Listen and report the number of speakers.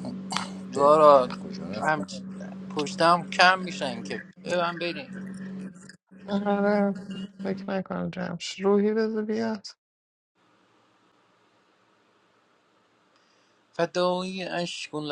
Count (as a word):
three